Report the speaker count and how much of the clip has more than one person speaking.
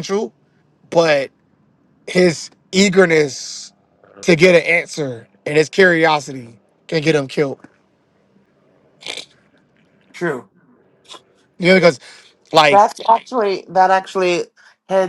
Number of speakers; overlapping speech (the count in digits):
2, about 1%